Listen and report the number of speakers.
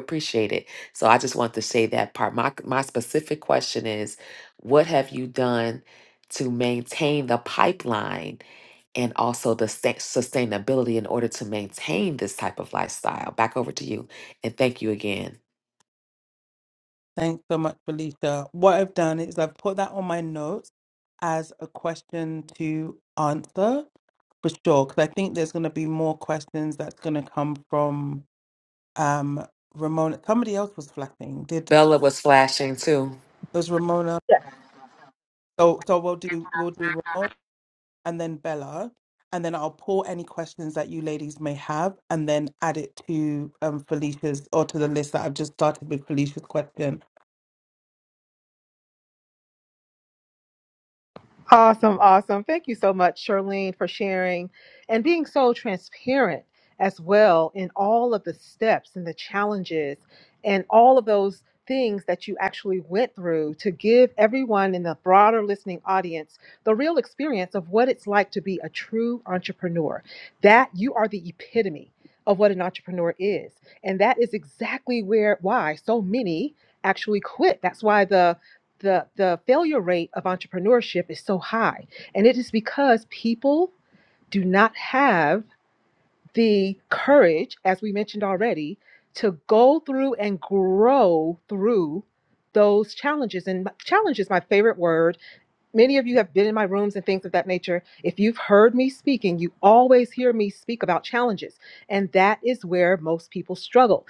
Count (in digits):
3